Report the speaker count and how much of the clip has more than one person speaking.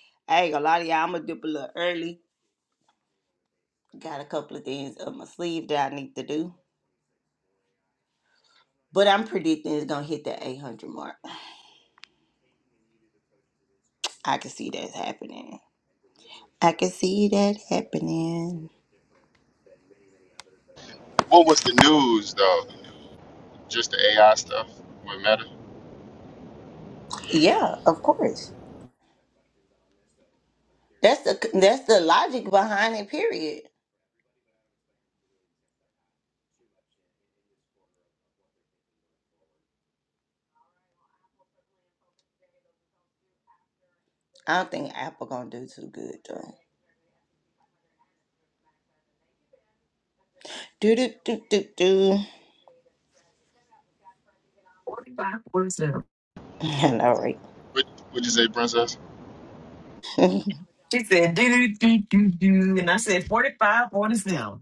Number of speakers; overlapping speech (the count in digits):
3, no overlap